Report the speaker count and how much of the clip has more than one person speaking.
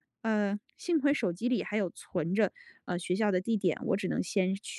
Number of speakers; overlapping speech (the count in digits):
1, no overlap